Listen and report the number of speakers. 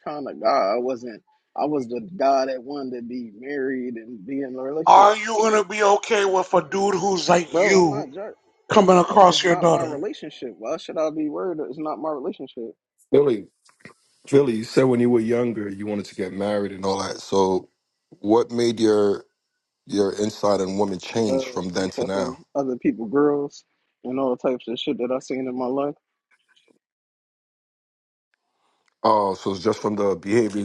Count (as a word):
three